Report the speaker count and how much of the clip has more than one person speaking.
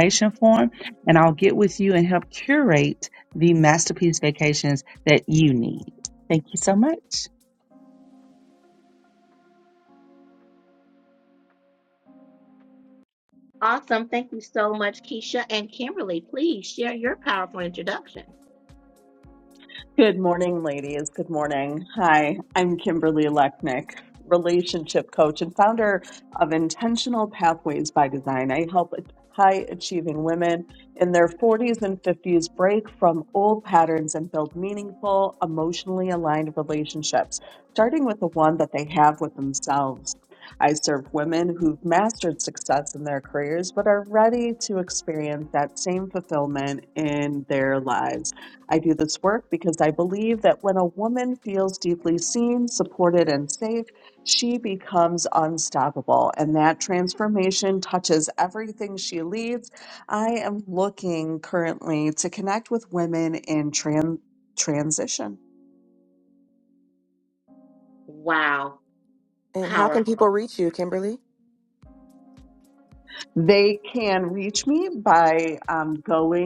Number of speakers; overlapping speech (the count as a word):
four, about 1%